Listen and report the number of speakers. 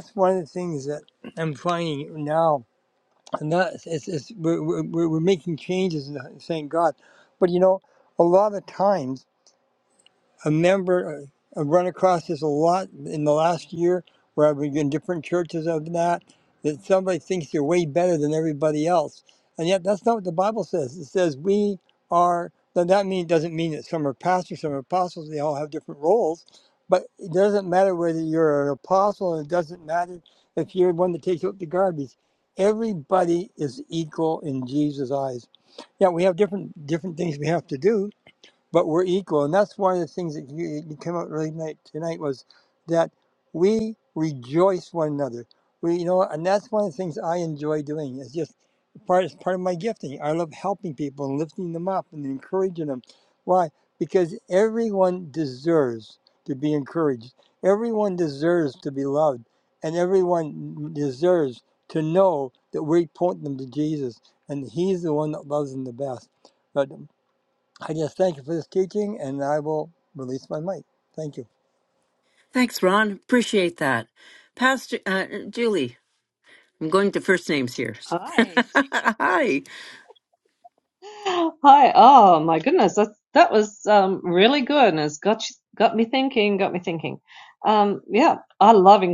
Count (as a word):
three